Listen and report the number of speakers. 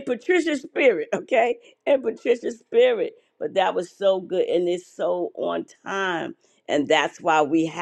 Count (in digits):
1